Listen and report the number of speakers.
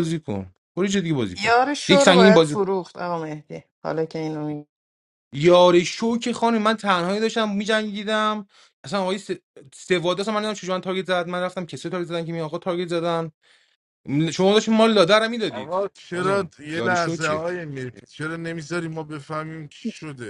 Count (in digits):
3